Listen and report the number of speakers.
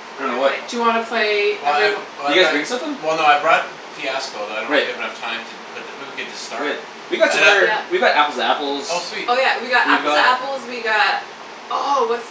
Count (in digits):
4